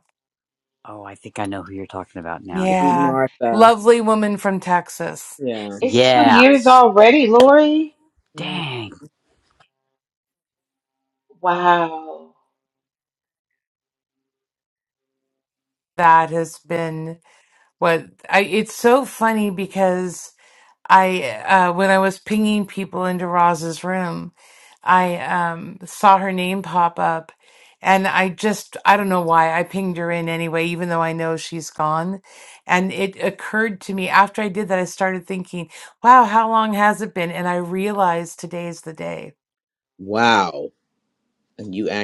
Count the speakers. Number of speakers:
4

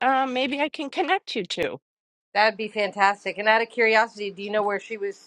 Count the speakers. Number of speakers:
2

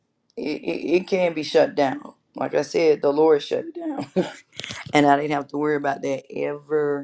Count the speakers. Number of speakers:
1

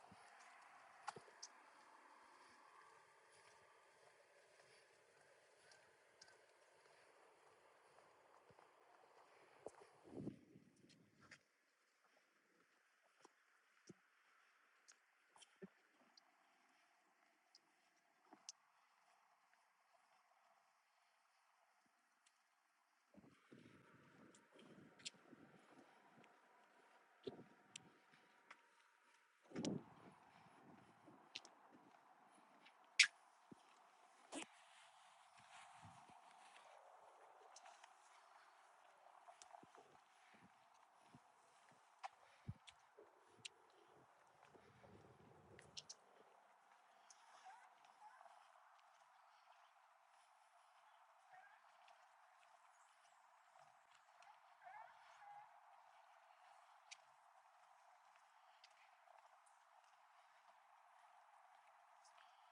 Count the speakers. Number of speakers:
0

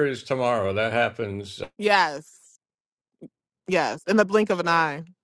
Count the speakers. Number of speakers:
2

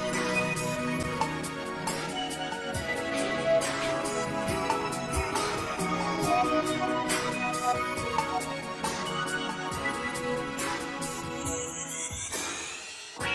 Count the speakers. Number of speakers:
0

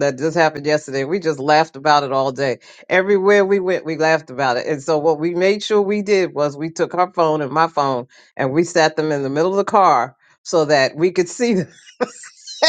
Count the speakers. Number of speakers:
1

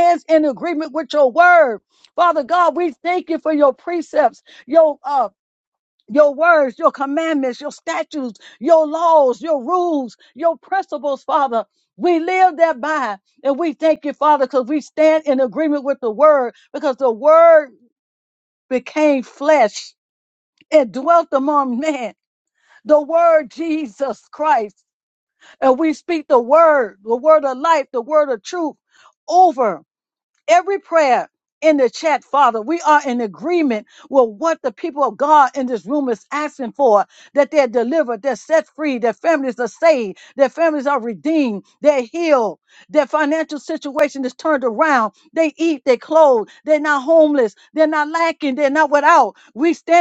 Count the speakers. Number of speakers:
1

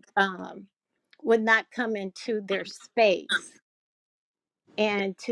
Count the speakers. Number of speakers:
1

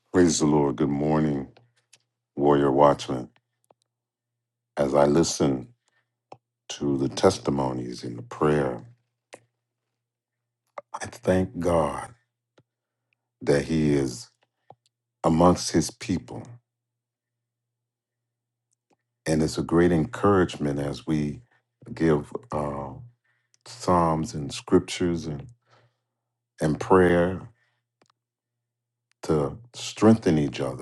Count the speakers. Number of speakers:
1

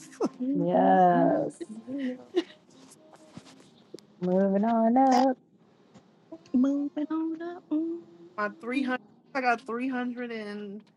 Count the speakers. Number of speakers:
3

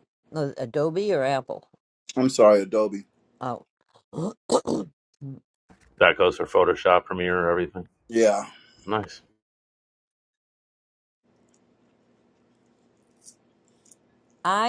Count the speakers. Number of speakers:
3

